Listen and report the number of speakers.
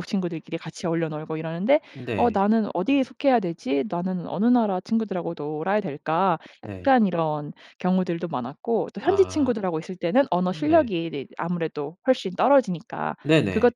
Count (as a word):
two